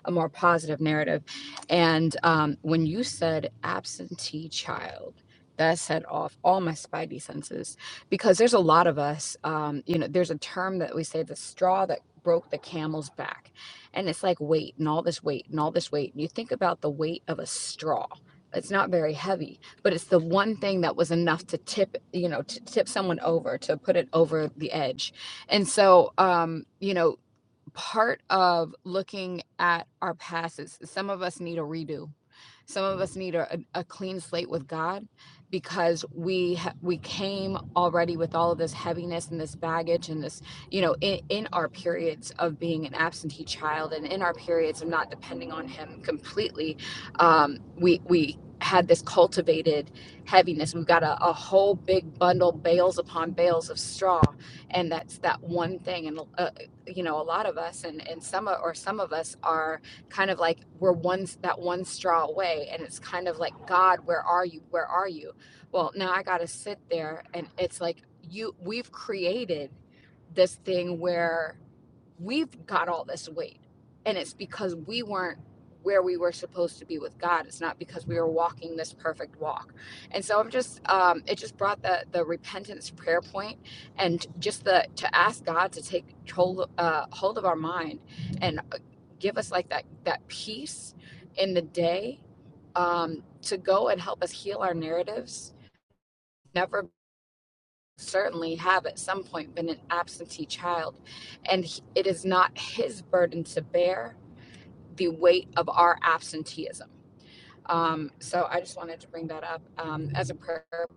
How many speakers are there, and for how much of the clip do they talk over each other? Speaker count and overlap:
one, no overlap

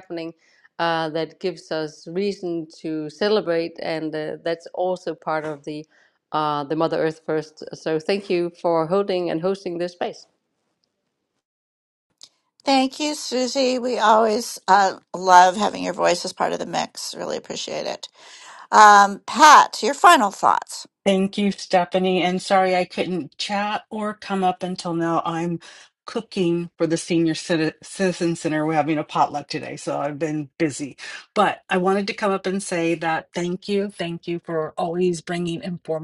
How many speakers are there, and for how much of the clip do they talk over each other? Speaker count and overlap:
three, no overlap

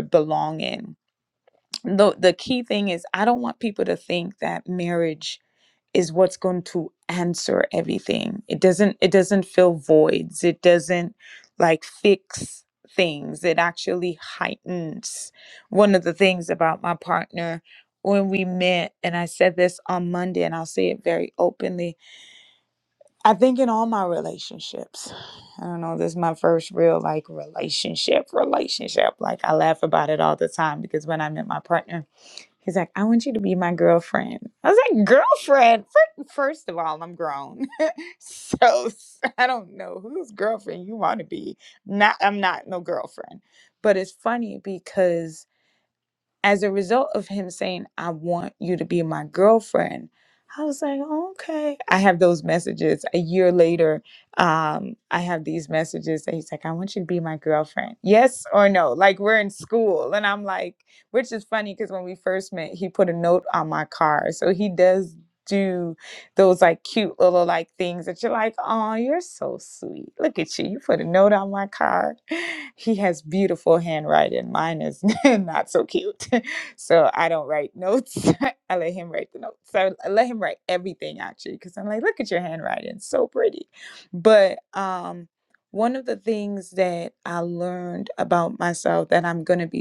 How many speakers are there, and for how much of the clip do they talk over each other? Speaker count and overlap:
one, no overlap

